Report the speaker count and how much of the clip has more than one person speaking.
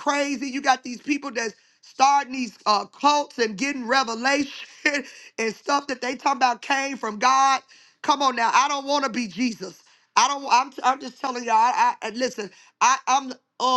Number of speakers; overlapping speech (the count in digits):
1, no overlap